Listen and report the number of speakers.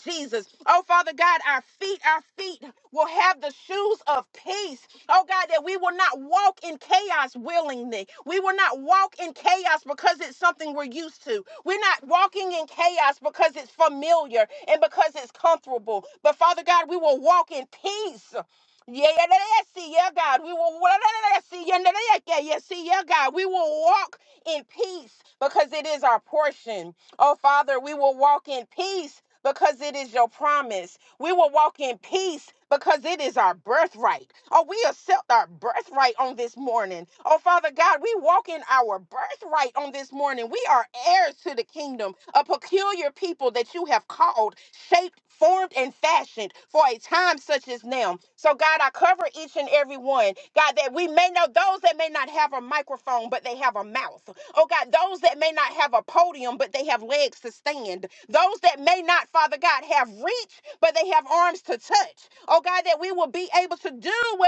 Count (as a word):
one